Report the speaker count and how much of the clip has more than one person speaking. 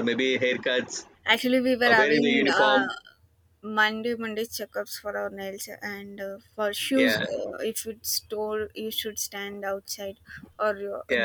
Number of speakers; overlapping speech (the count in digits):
2, about 14%